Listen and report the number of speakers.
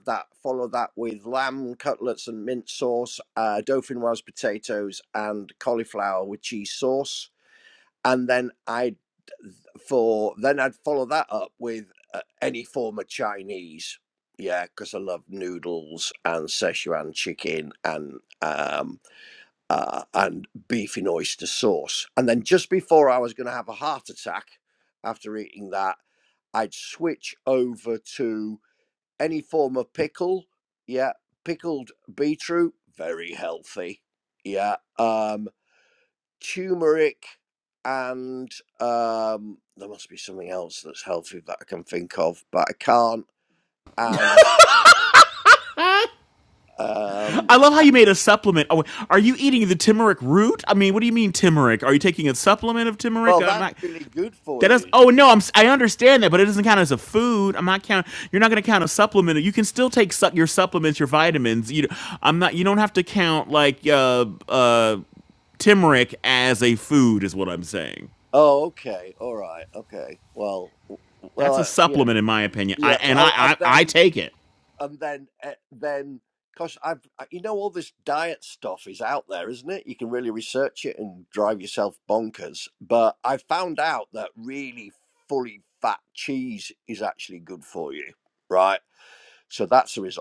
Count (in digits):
2